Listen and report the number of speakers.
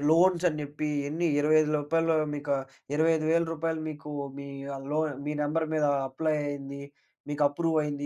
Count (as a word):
one